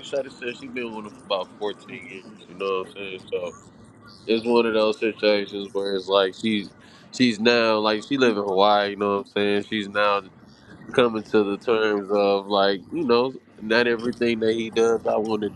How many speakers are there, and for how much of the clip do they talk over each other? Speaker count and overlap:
one, no overlap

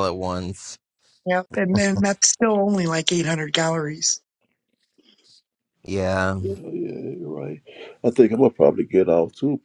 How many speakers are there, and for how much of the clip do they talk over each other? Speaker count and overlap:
three, under 1%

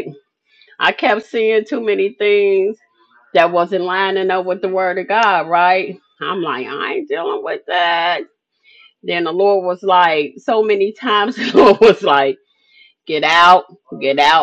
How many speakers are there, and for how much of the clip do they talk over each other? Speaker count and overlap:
one, no overlap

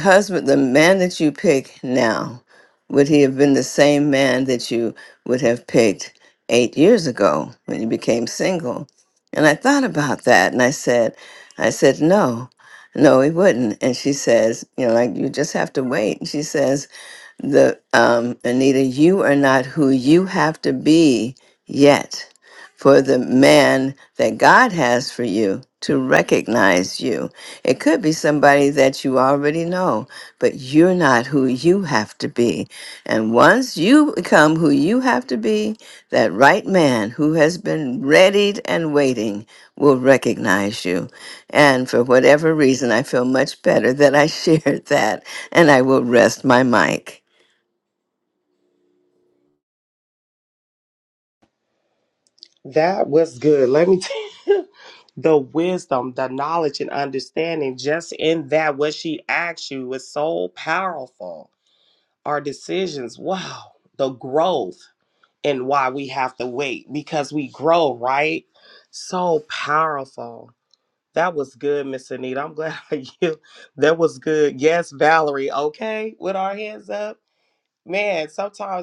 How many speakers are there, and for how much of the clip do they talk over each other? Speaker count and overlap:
two, no overlap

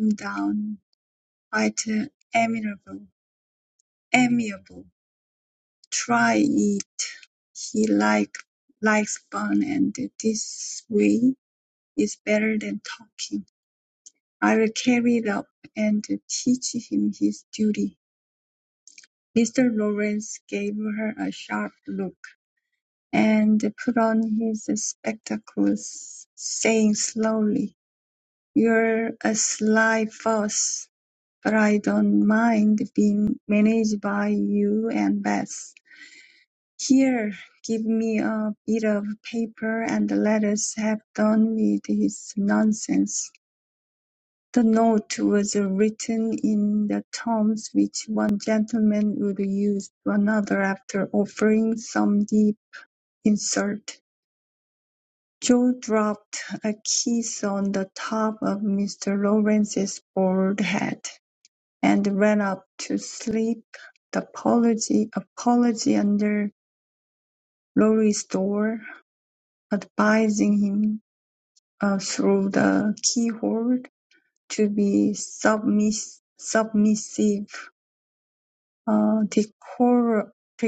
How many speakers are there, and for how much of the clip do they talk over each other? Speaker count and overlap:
one, no overlap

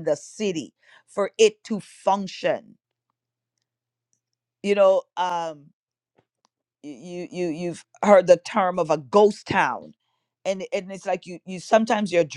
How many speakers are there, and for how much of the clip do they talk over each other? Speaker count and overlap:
one, no overlap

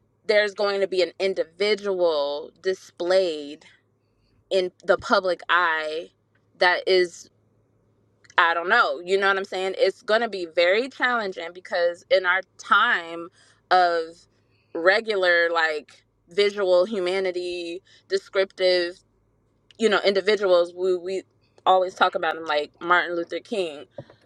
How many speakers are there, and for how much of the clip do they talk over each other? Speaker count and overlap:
one, no overlap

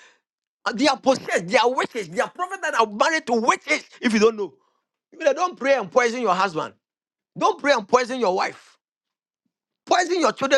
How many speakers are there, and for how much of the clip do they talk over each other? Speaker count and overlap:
one, no overlap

